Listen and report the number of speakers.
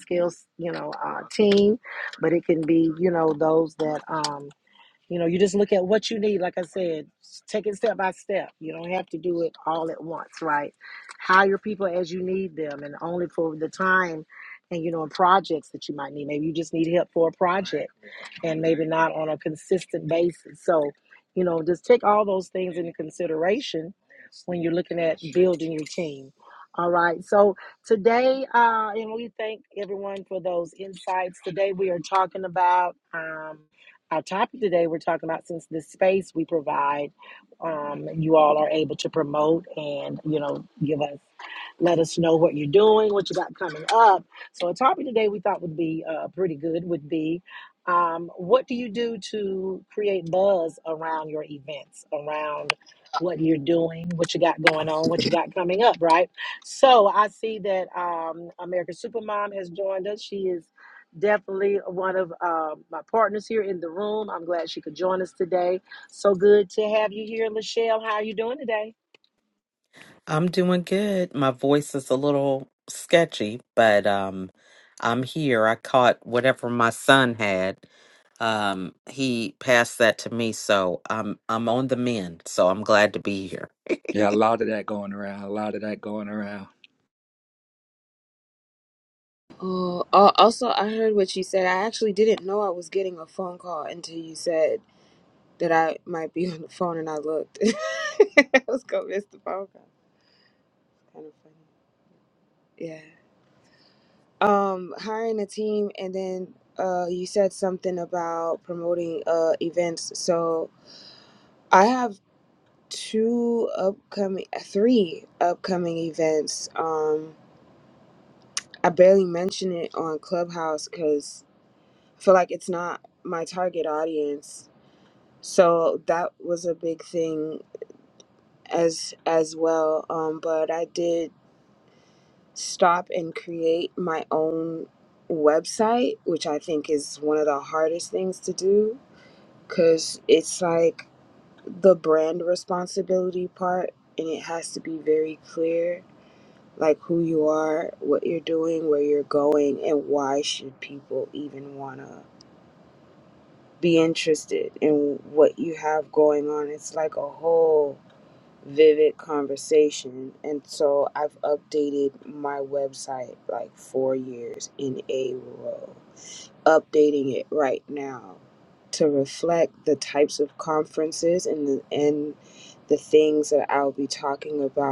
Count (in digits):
4